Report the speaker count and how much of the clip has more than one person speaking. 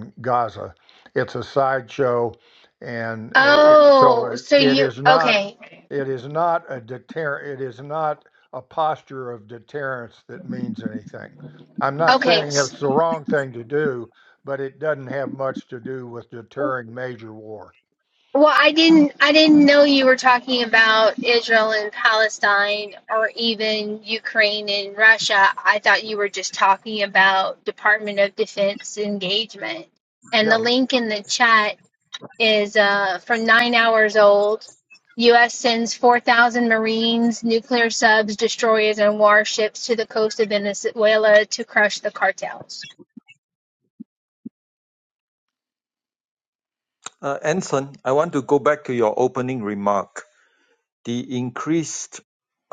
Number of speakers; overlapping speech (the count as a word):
three, about 5%